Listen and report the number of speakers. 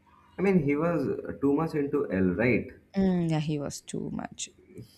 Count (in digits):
2